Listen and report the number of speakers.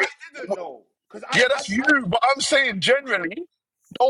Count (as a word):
two